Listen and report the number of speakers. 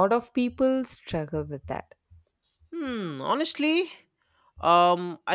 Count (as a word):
two